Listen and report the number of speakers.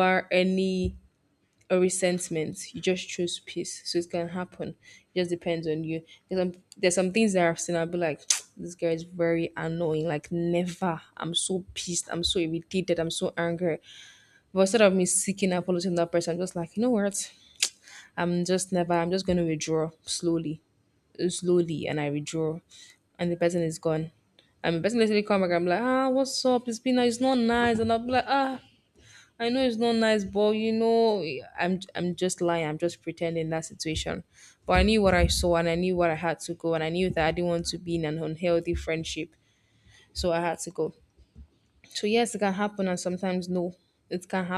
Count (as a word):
one